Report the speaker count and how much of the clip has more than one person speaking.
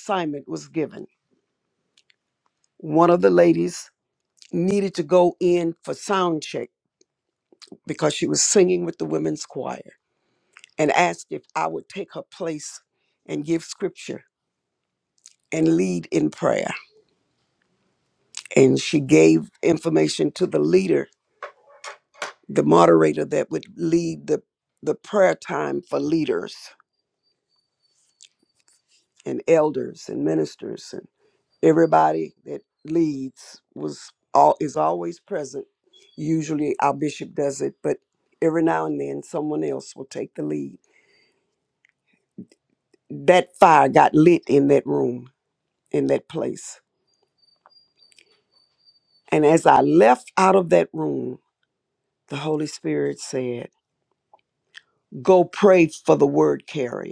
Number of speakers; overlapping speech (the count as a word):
one, no overlap